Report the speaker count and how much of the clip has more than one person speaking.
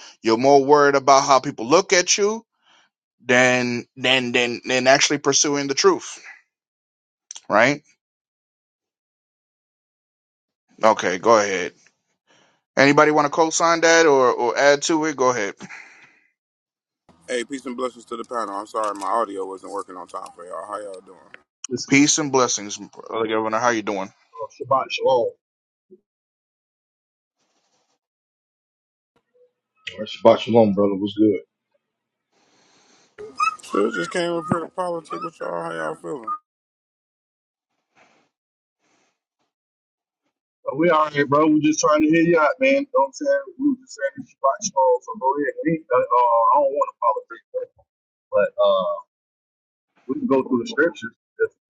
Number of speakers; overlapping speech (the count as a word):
four, under 1%